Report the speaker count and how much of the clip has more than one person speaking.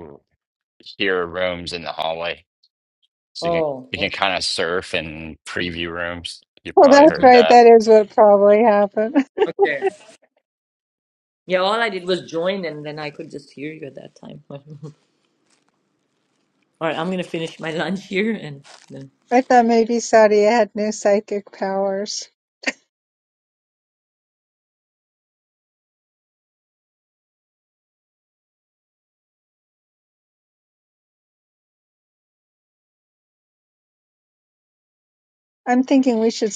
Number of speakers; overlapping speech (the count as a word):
three, about 4%